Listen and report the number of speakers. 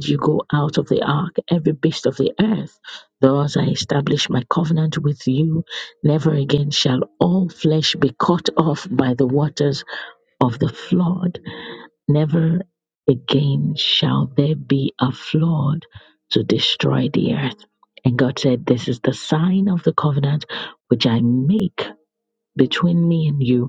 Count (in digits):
1